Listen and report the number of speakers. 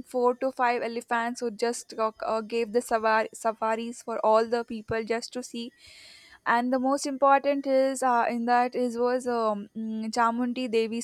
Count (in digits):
1